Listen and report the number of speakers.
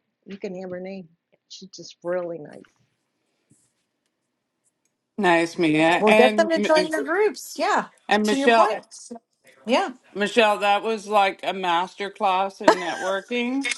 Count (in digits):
3